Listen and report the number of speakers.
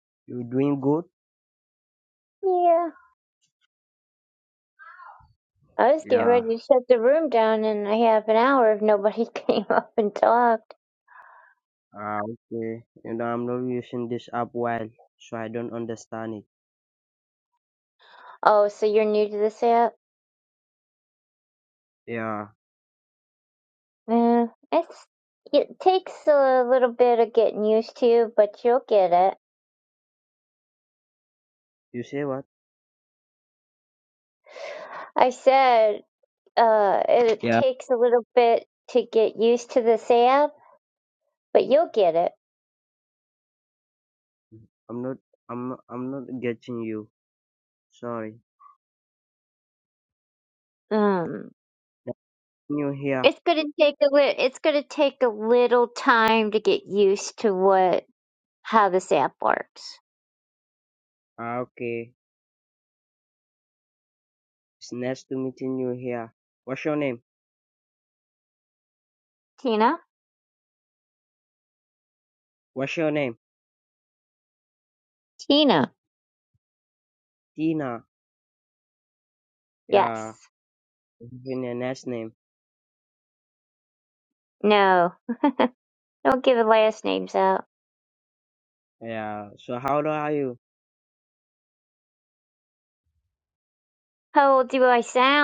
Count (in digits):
2